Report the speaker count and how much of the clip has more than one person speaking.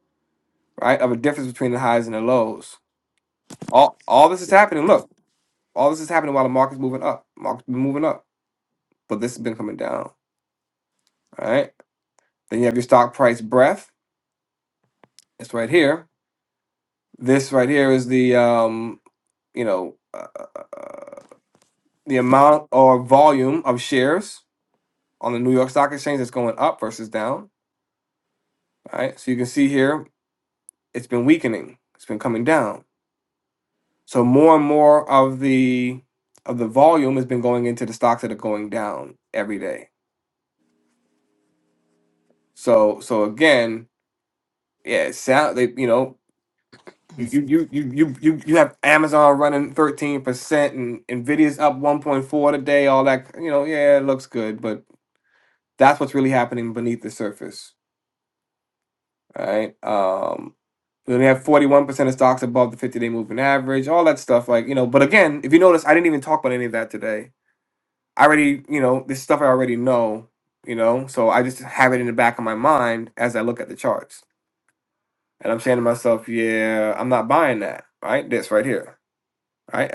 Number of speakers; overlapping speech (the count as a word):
one, no overlap